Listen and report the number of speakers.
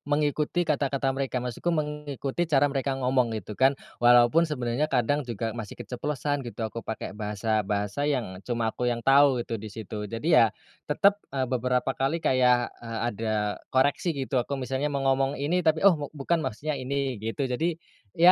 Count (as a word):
one